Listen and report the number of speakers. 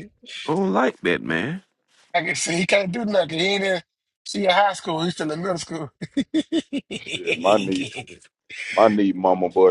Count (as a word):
three